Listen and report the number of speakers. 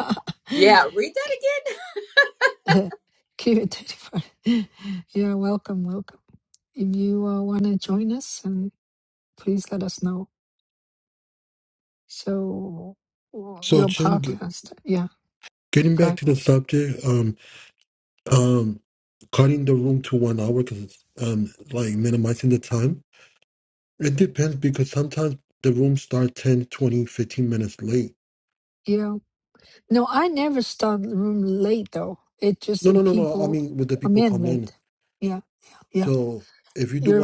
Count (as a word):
three